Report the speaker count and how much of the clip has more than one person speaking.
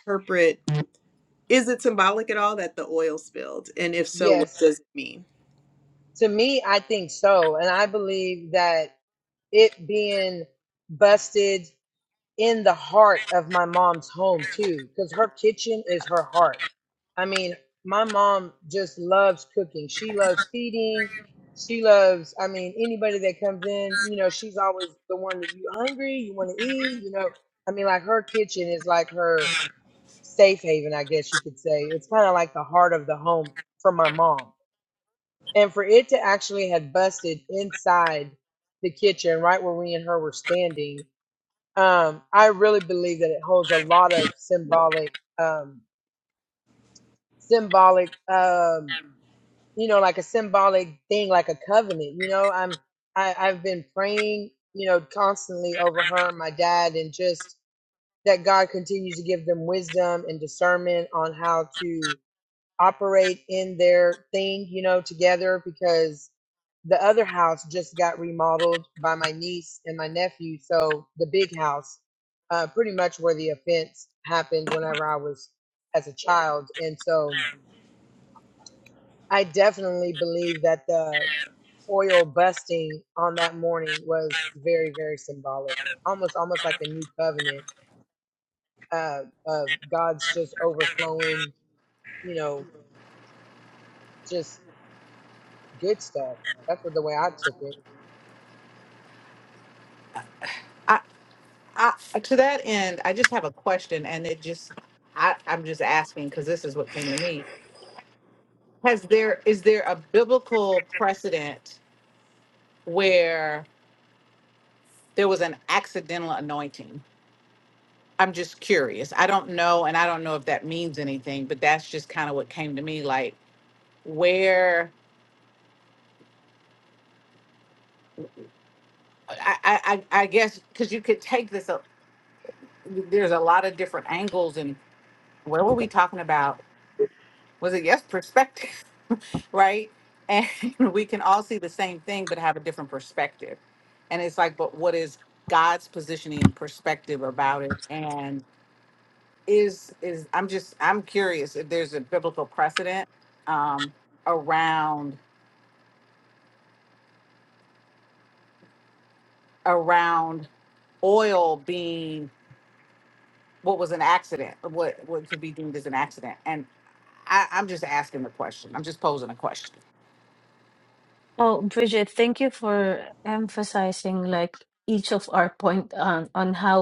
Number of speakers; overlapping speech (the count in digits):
4, under 1%